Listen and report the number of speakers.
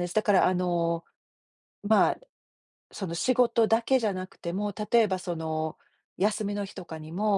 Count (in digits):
1